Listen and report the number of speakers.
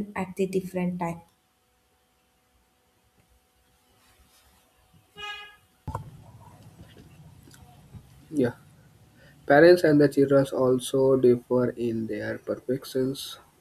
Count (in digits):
2